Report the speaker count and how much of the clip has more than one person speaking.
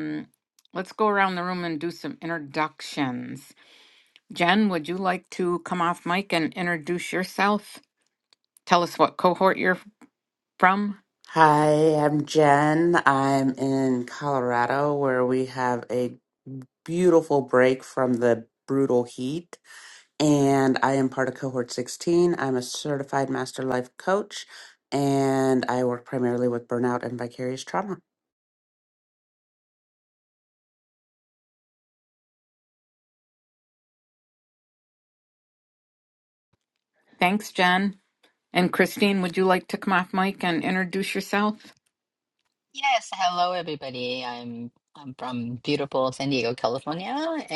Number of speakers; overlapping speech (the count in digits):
3, no overlap